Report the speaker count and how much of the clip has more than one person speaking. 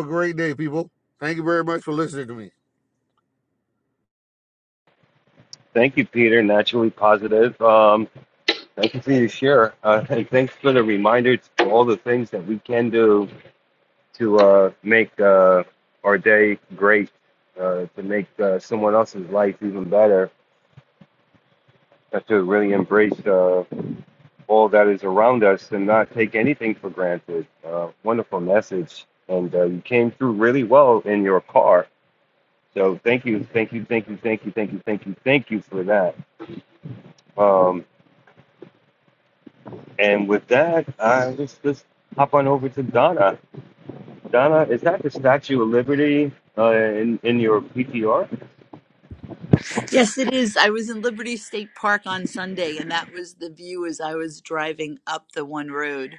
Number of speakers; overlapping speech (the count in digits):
3, no overlap